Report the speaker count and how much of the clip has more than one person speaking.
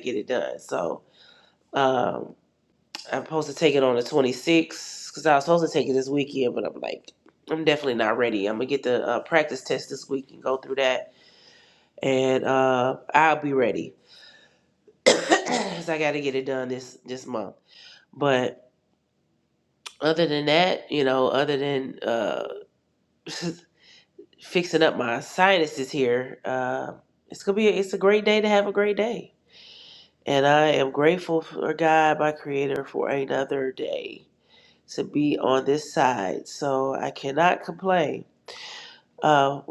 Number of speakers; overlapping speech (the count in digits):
1, no overlap